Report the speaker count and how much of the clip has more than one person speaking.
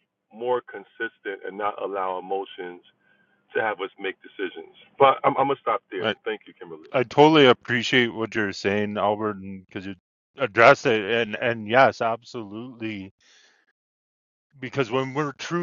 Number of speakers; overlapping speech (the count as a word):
two, about 1%